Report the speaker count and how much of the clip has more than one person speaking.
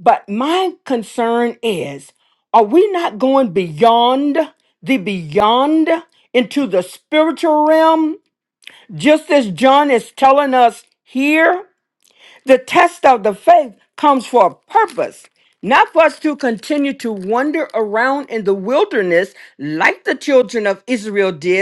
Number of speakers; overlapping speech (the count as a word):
one, no overlap